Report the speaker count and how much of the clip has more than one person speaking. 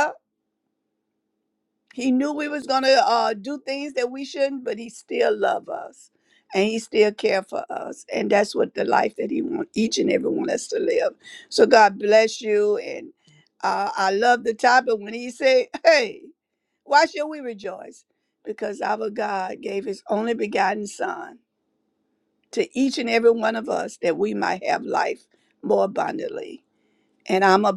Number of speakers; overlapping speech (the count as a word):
one, no overlap